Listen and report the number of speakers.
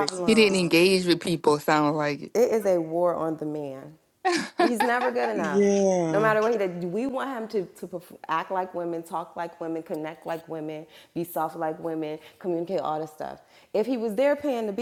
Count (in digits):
3